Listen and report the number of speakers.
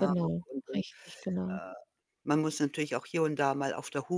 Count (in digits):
2